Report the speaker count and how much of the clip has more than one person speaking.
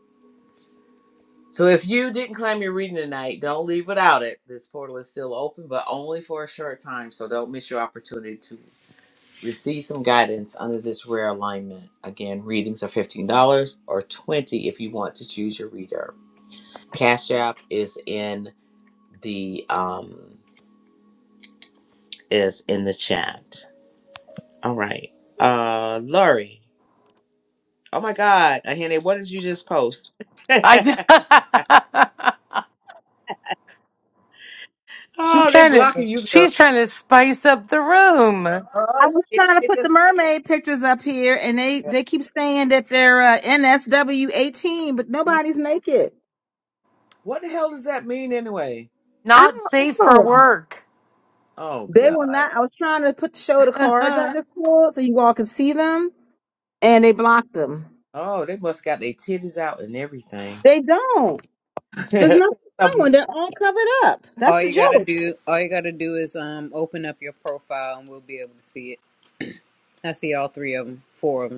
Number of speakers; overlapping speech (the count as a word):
four, about 7%